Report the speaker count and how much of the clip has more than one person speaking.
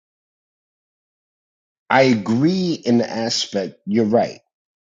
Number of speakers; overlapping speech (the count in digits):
1, no overlap